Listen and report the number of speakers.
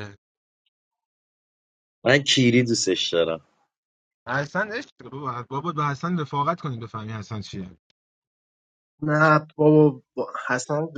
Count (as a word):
three